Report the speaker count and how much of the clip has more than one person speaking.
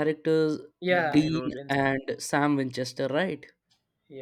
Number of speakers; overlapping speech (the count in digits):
2, about 19%